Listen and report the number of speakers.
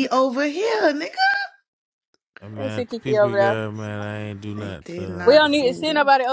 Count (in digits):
3